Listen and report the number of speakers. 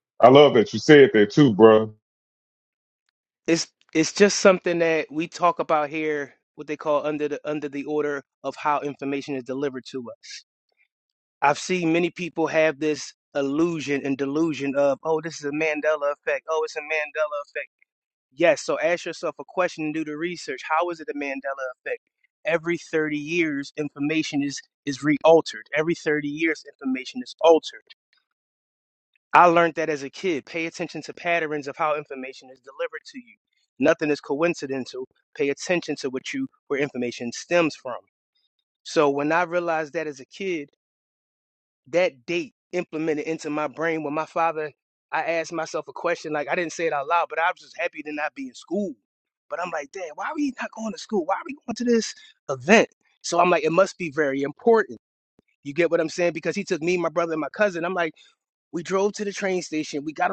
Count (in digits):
2